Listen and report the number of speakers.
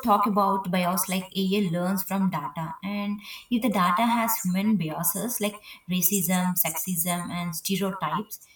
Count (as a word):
one